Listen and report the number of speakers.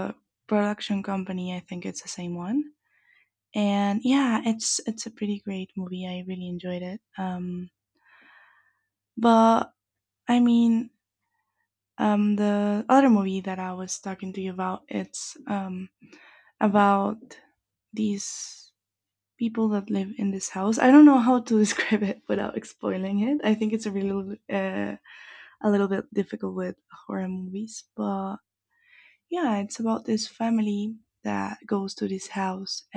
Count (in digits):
1